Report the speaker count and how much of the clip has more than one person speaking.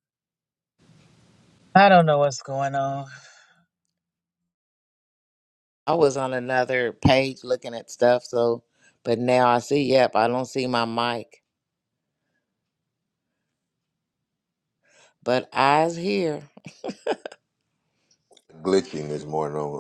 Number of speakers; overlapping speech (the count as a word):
three, no overlap